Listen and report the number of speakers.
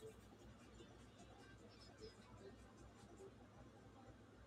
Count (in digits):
0